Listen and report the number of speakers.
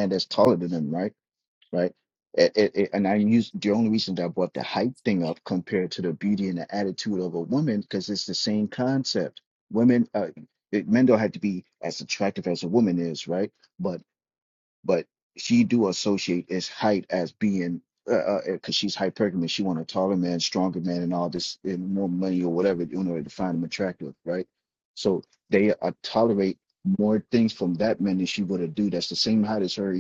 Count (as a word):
one